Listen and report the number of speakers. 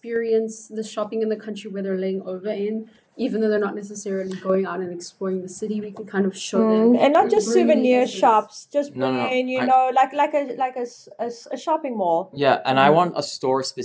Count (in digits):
3